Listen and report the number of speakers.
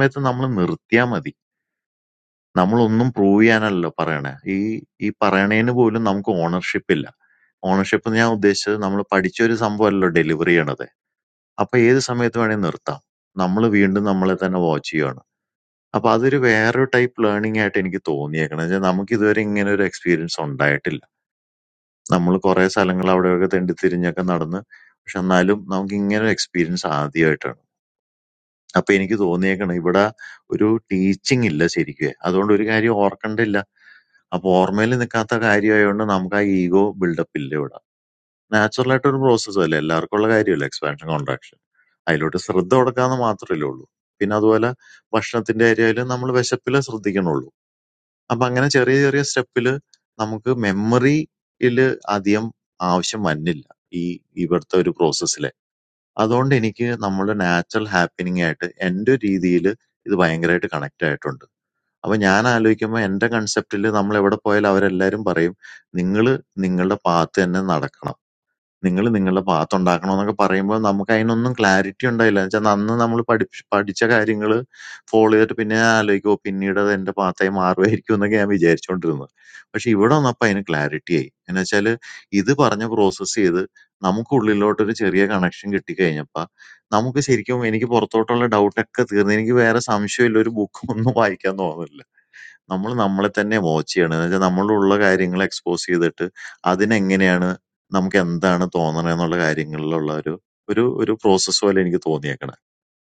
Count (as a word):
one